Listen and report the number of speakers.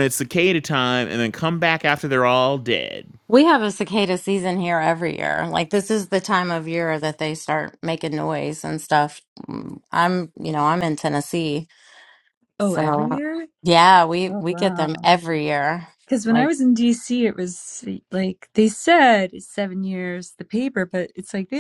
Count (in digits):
3